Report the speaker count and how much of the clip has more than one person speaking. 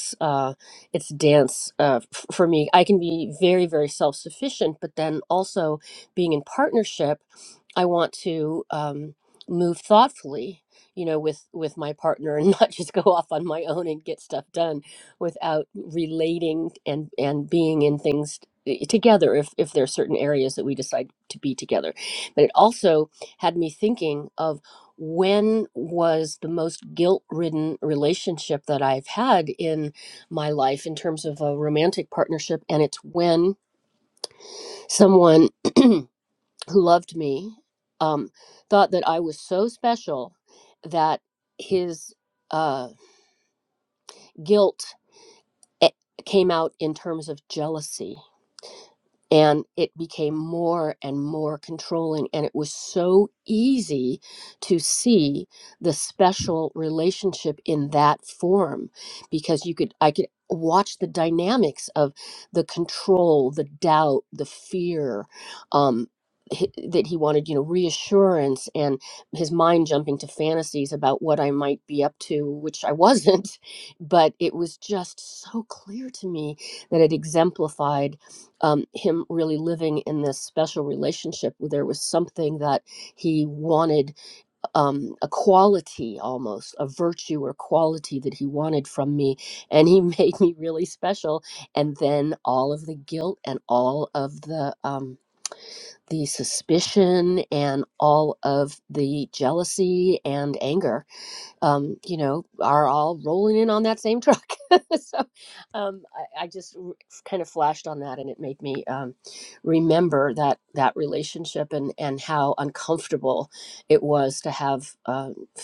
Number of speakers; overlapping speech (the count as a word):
one, no overlap